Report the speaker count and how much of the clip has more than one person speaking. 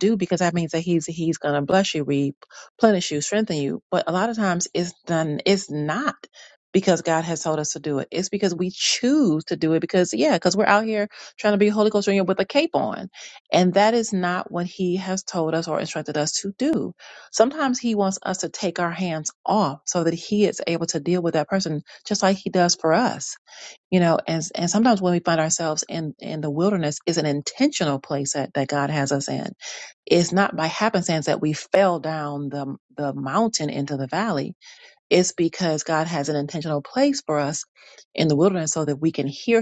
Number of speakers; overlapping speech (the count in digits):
1, no overlap